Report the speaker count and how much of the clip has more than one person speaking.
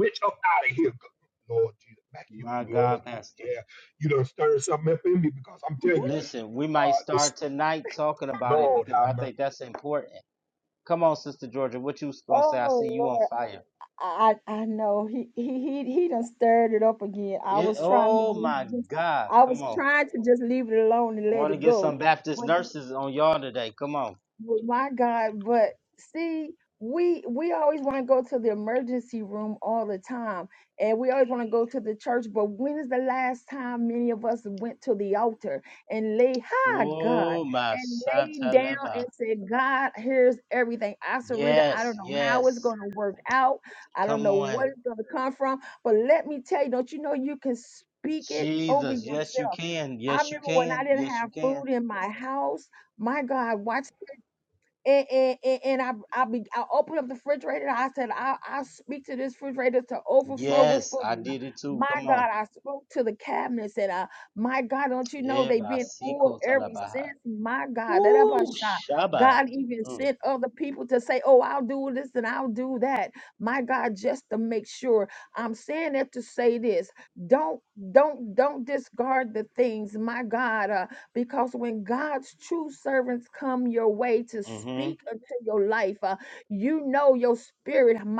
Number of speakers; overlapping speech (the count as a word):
three, about 18%